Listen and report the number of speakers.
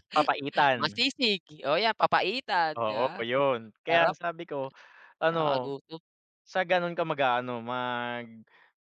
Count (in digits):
2